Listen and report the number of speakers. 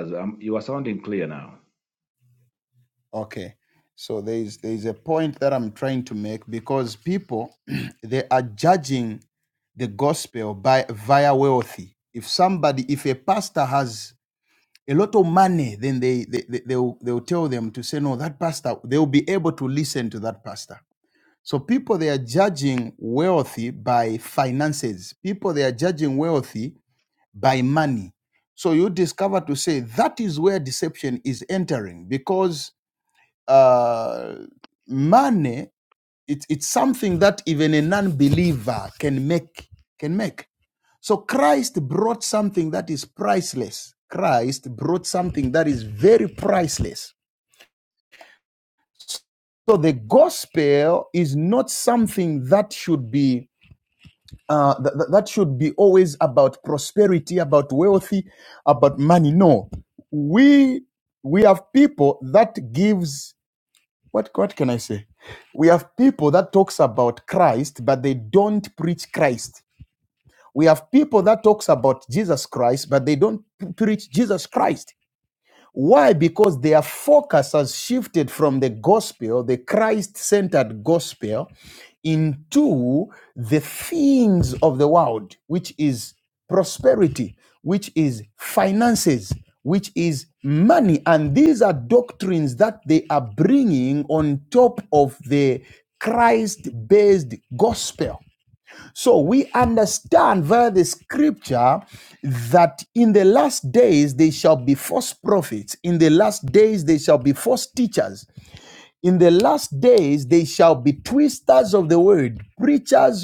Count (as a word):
two